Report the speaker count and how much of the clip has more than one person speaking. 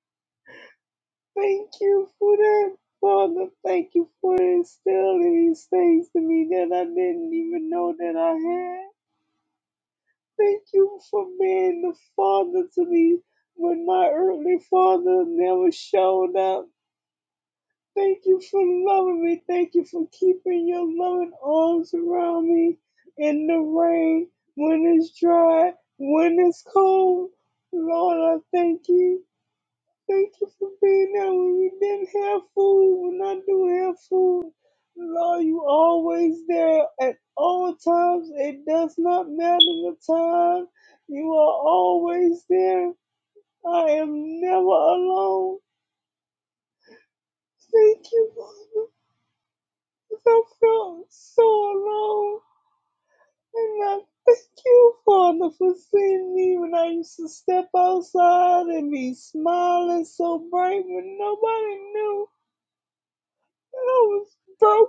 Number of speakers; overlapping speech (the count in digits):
1, no overlap